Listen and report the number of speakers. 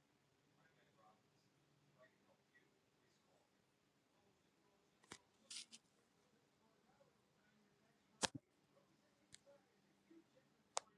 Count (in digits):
0